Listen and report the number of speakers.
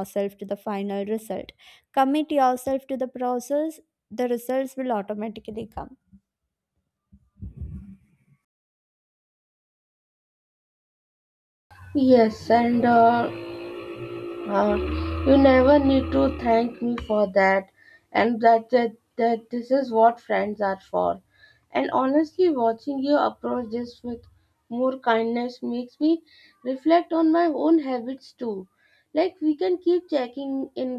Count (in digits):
2